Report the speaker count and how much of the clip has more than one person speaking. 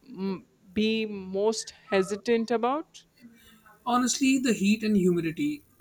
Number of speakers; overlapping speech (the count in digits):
2, no overlap